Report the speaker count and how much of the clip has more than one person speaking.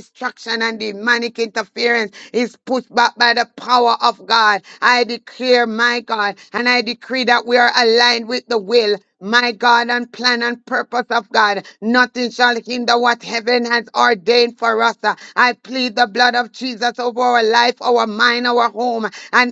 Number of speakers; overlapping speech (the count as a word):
one, no overlap